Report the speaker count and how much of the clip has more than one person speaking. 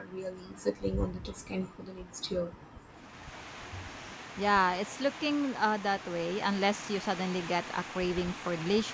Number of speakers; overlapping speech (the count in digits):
2, no overlap